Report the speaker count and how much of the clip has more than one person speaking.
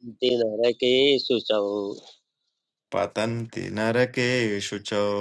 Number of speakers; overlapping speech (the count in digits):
2, no overlap